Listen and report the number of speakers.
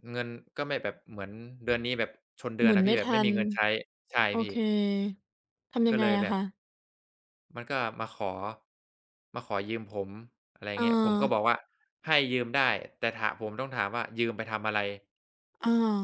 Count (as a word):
two